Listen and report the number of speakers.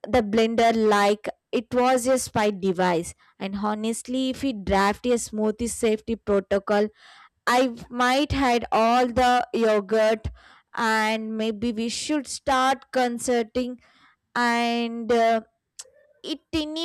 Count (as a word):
one